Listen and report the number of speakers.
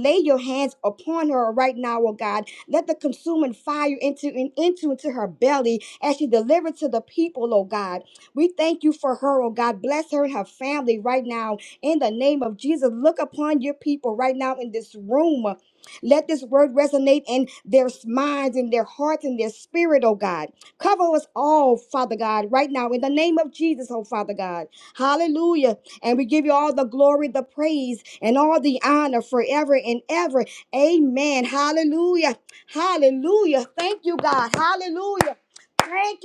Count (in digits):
1